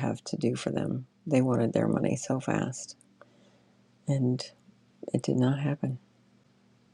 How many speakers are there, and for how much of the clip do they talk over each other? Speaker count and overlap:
one, no overlap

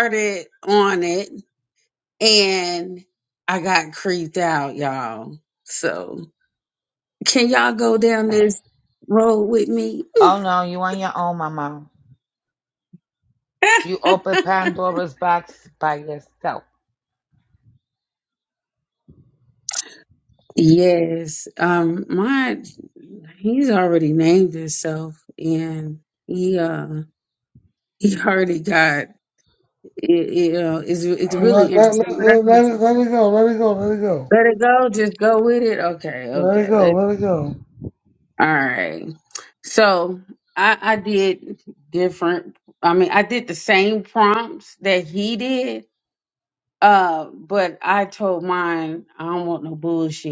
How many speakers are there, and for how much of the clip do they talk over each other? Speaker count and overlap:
three, about 4%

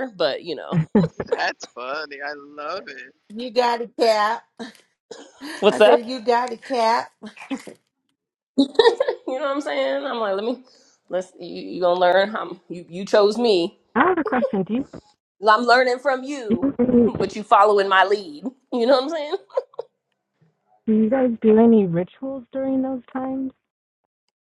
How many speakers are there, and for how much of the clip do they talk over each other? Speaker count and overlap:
four, about 3%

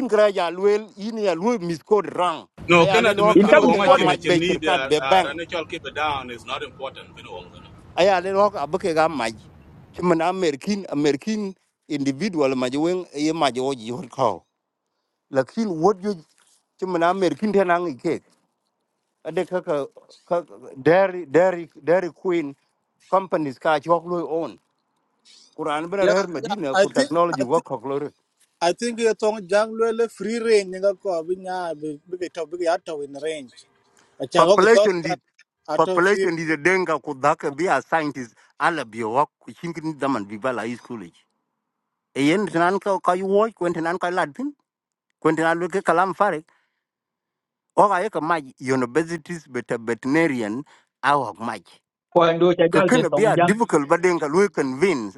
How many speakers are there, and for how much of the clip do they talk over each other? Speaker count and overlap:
four, about 11%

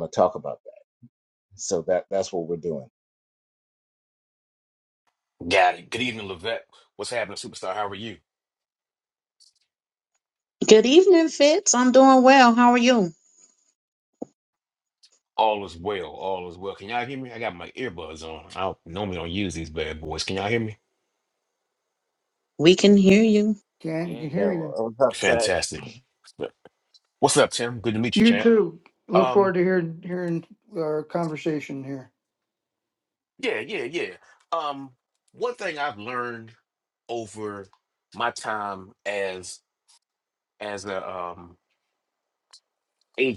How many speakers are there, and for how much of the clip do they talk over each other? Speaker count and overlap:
four, about 4%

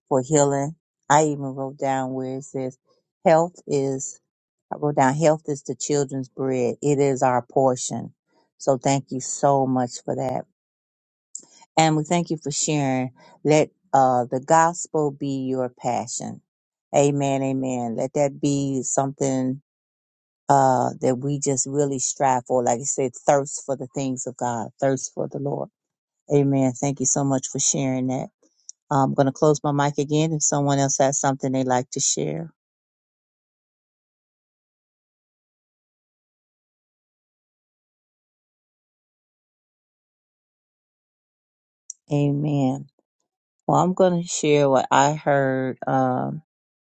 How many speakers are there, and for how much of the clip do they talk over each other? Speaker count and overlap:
one, no overlap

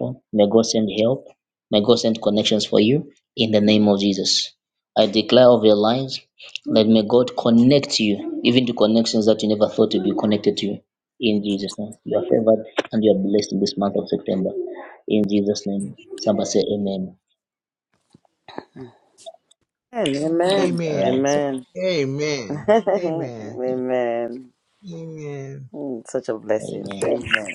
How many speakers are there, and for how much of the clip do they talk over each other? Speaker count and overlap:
three, about 8%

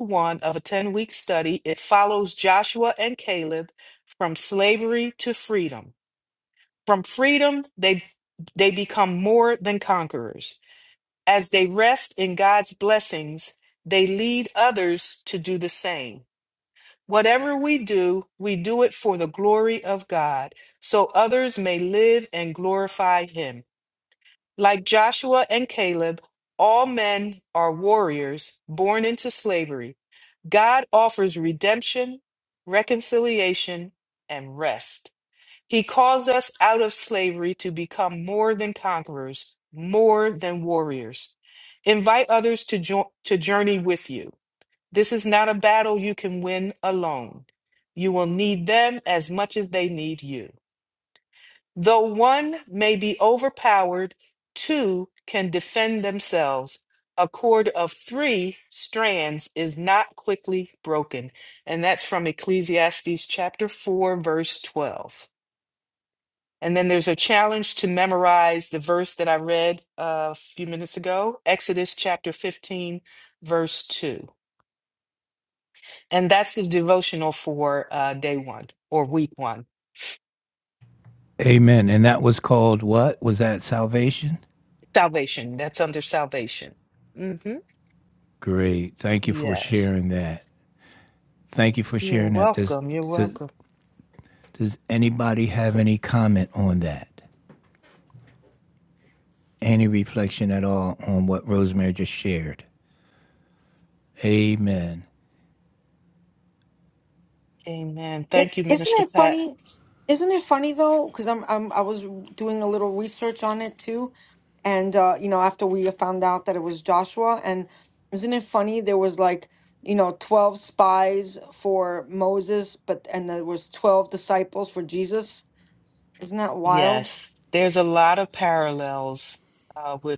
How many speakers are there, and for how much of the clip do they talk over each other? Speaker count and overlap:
three, about 2%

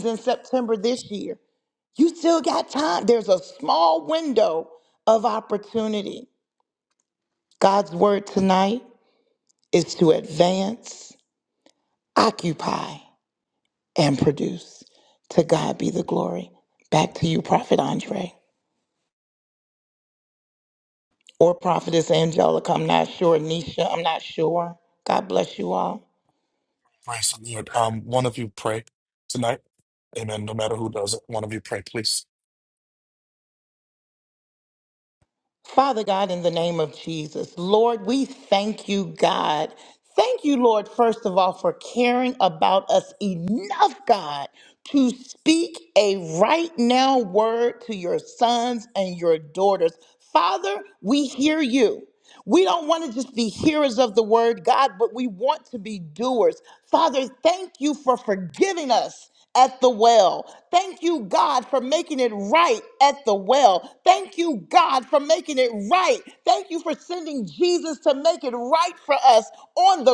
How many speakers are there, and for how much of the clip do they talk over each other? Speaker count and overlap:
two, no overlap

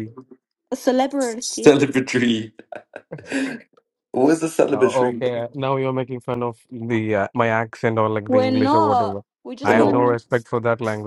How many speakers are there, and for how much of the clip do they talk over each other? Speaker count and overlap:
three, about 21%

